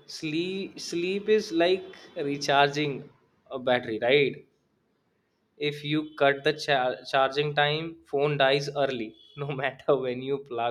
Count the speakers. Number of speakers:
1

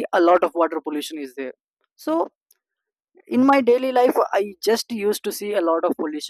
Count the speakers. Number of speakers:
1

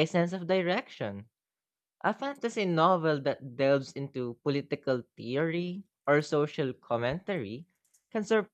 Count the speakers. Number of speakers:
1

